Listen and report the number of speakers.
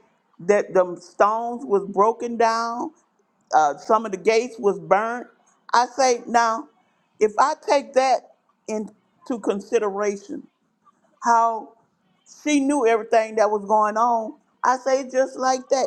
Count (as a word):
one